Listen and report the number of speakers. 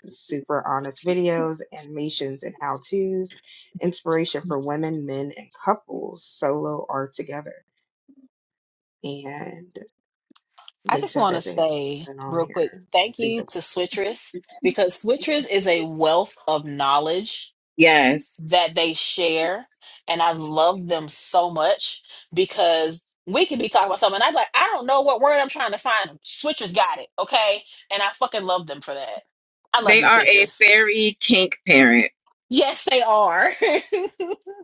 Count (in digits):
3